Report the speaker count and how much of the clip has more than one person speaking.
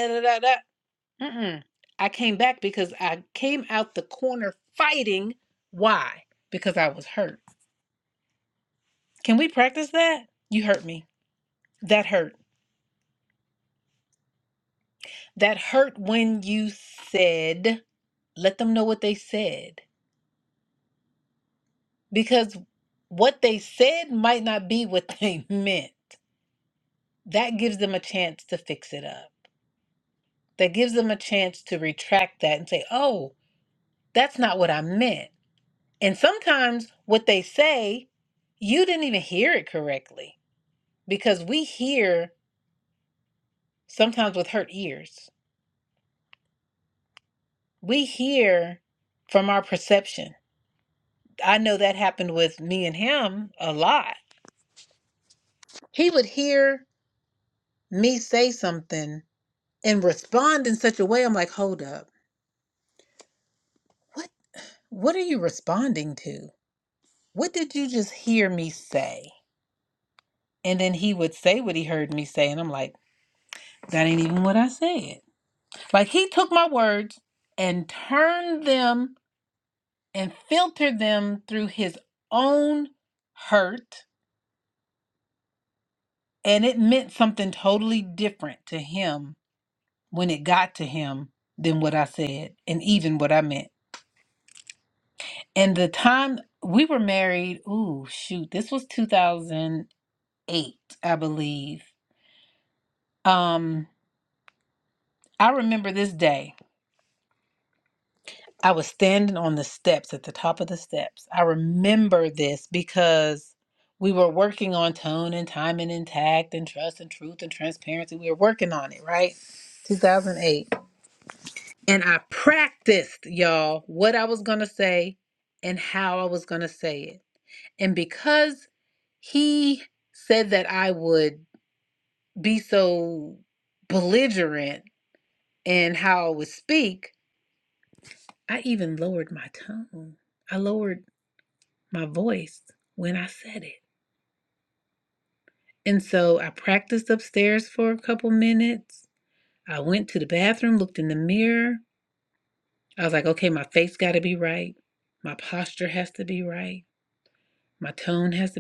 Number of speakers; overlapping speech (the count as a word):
one, no overlap